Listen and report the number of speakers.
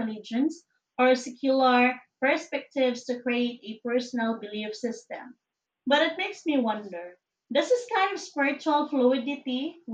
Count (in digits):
1